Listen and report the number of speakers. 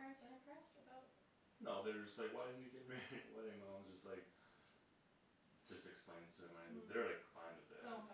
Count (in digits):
2